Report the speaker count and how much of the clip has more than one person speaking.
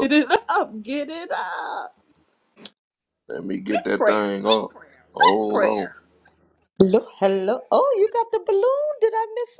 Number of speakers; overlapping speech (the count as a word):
three, about 15%